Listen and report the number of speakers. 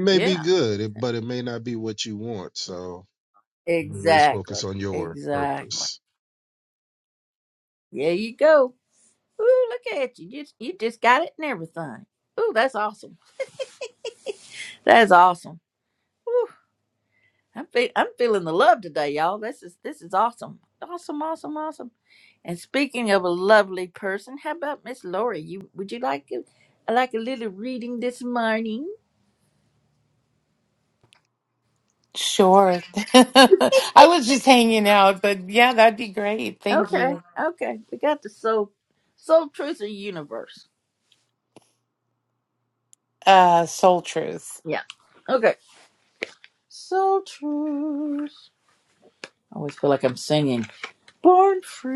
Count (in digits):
3